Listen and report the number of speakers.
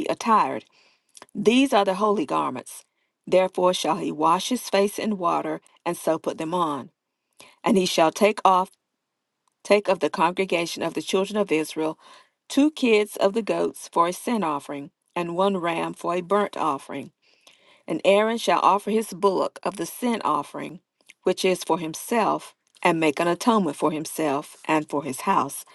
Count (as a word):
one